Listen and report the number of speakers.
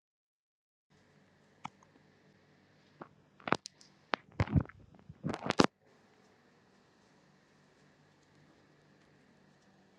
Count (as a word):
zero